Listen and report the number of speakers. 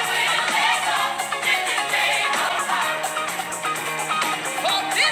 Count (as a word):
zero